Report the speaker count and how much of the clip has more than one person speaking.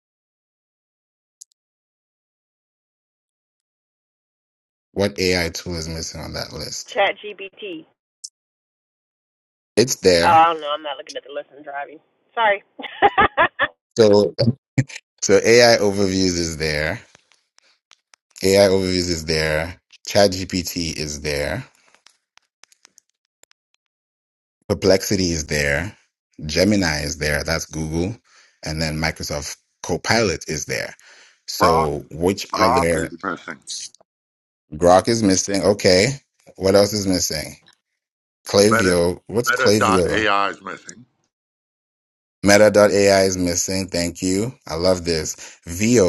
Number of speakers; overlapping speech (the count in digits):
3, about 4%